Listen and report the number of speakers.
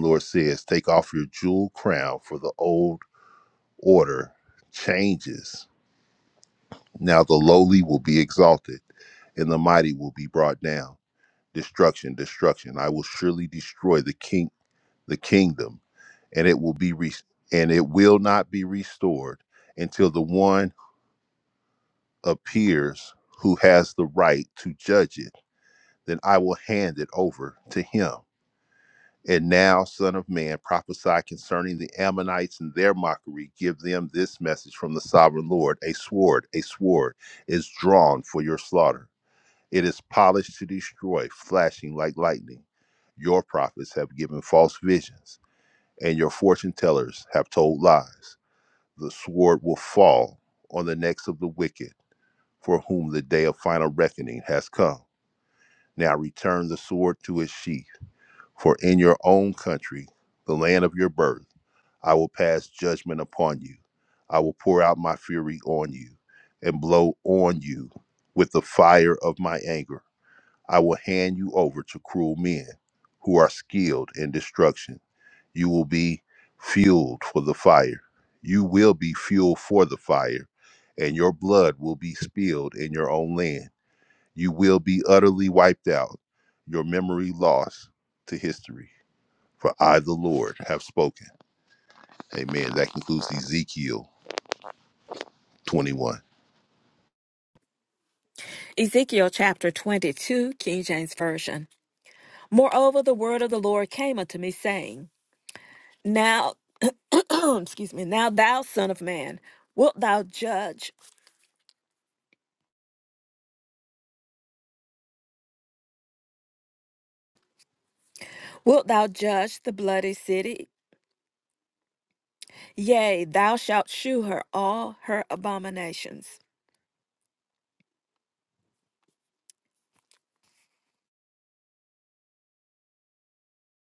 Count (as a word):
two